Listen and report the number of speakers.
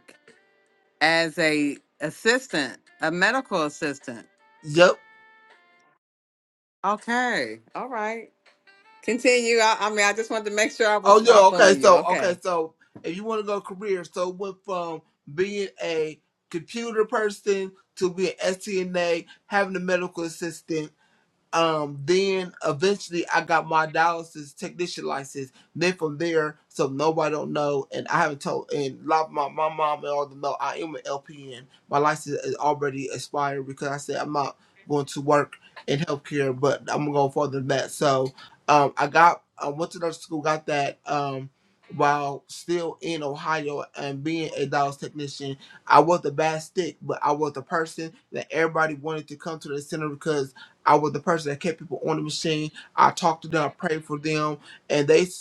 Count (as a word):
two